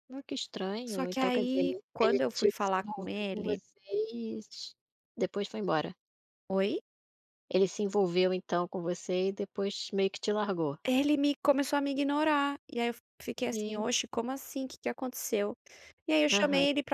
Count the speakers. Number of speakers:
two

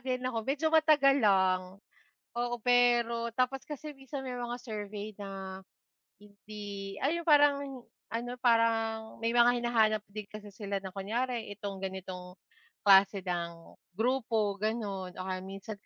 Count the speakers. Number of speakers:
one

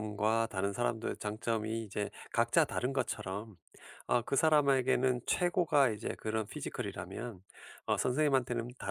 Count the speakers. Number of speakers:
one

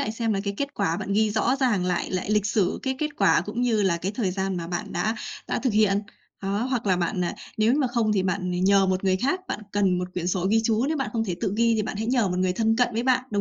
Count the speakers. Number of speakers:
one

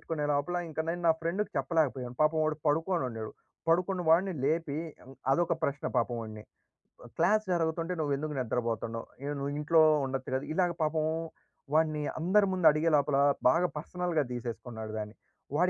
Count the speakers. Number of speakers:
one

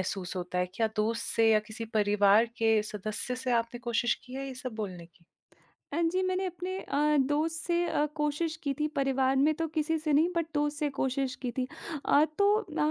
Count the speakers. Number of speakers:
two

